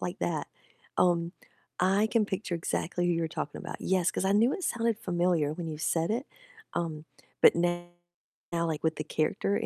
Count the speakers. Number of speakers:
1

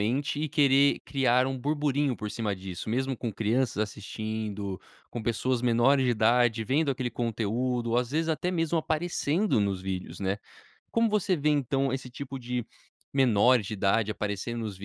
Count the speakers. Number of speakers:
1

